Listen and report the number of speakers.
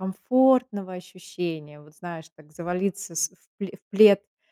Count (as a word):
one